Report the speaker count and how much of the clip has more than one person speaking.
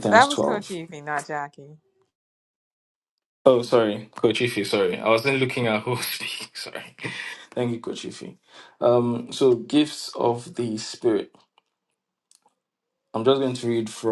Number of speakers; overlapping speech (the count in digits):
2, about 4%